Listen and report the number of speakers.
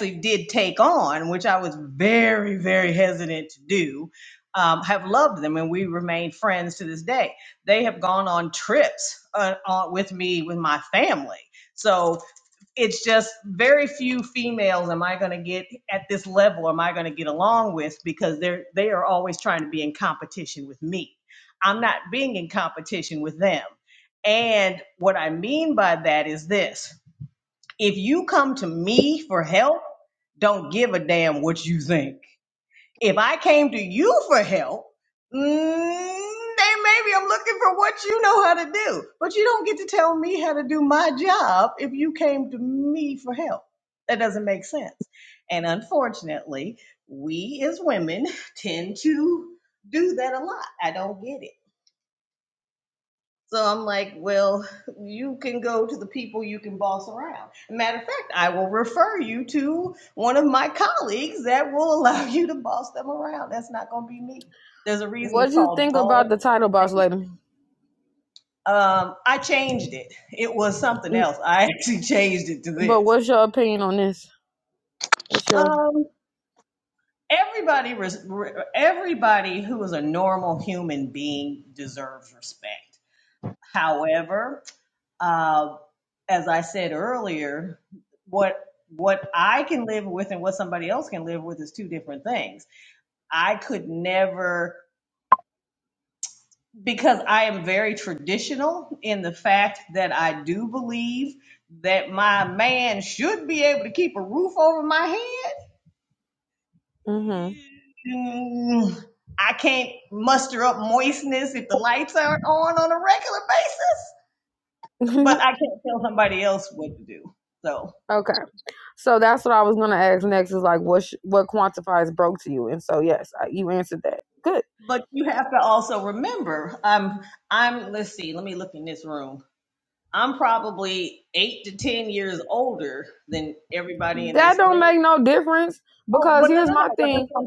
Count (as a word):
two